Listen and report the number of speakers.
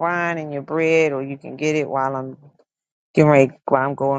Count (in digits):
1